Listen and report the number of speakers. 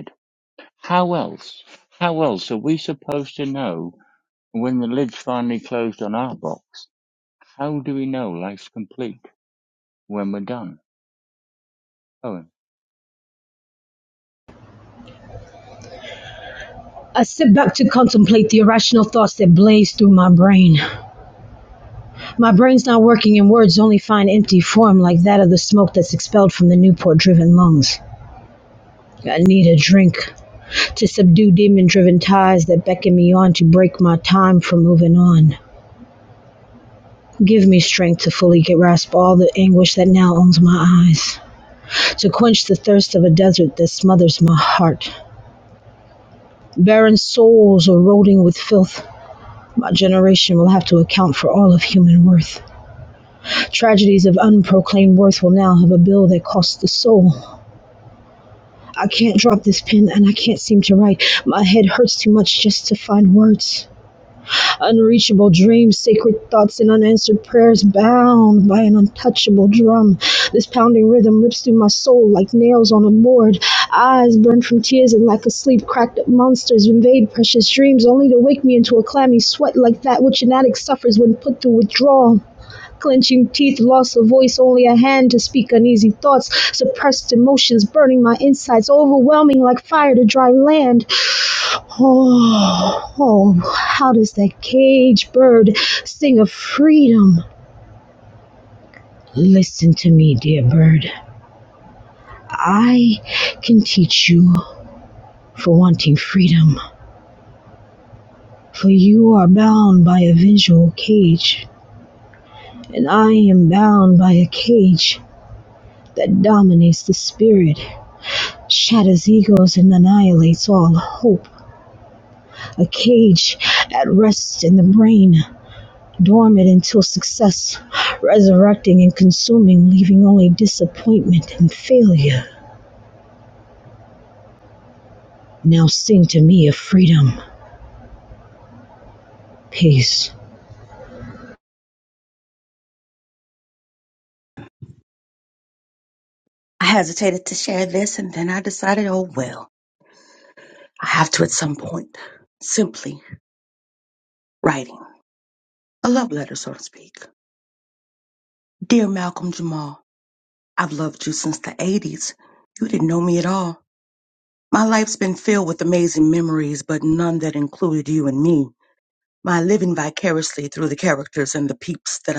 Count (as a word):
three